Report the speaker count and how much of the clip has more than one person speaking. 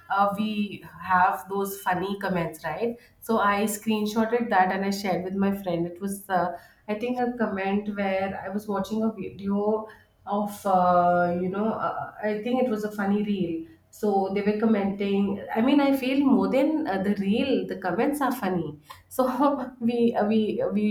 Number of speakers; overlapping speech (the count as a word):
one, no overlap